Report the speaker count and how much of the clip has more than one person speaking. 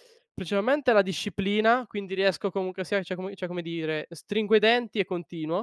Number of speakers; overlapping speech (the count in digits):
1, no overlap